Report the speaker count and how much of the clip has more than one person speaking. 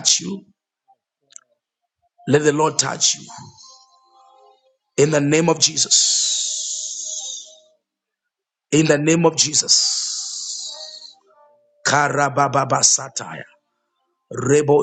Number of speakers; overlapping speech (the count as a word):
one, no overlap